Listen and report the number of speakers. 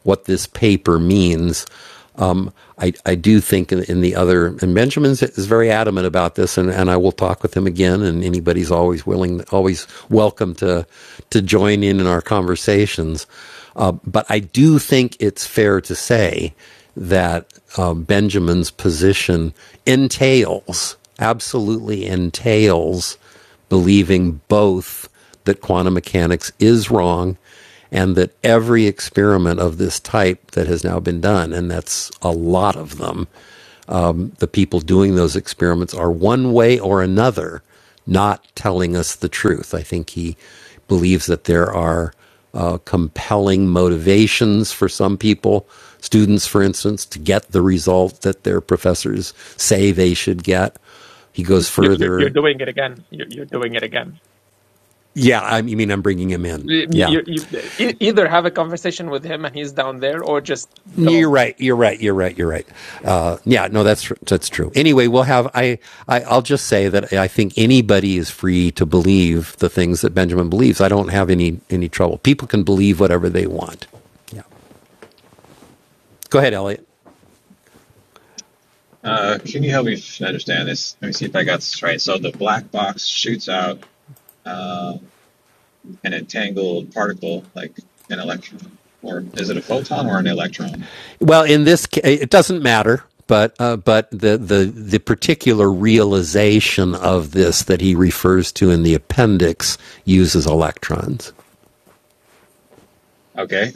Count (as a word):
three